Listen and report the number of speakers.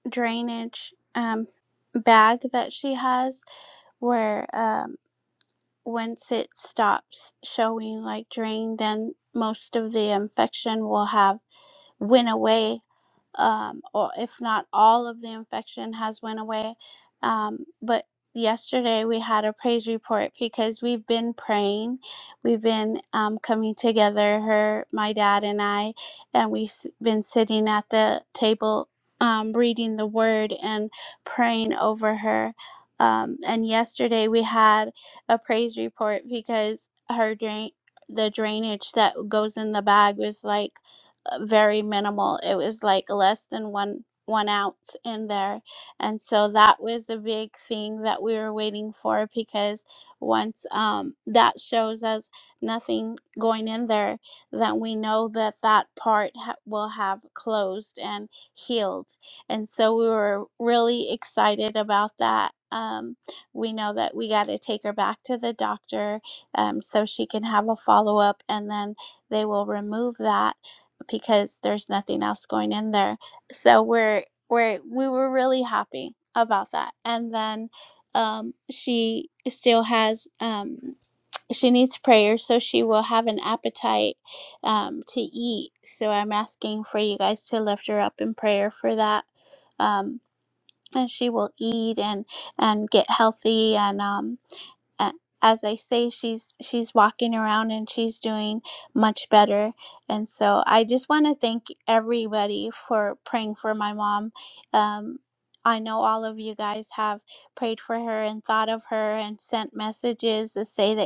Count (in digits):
1